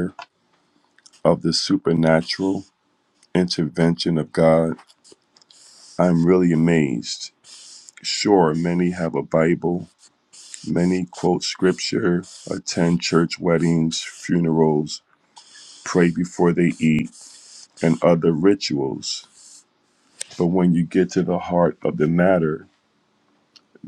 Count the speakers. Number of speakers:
one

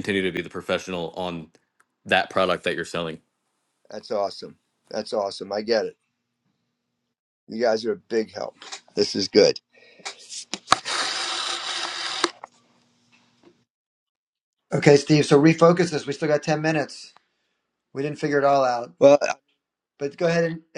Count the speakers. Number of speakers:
three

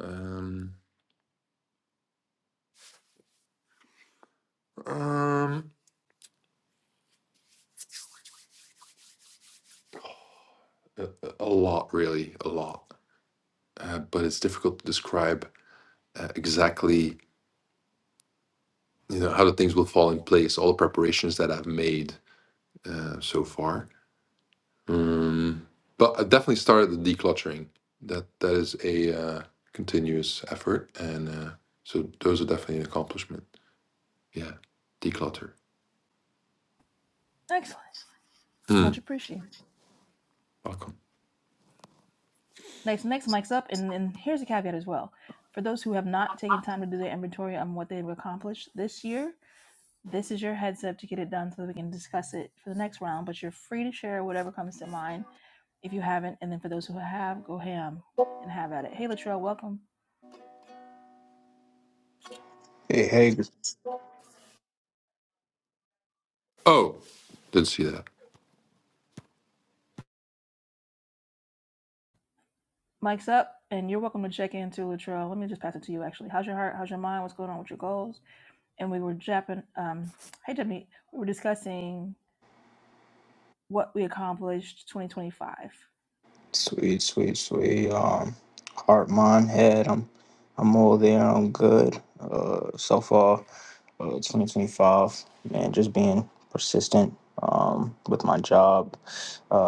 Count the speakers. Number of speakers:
three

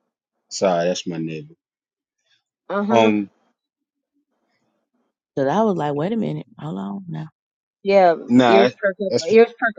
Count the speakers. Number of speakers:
three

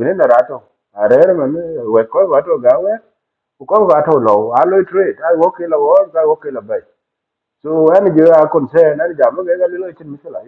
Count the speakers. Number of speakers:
one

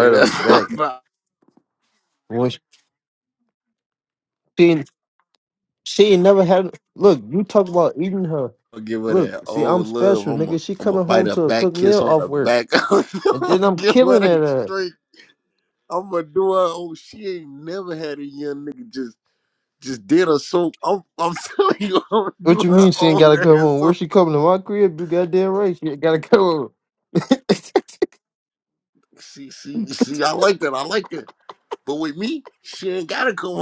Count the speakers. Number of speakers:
two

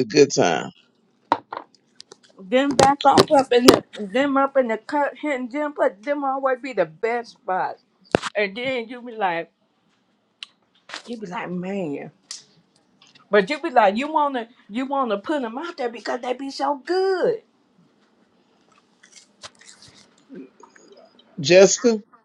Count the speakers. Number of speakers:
two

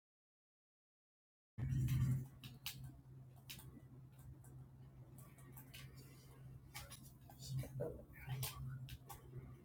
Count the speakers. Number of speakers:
zero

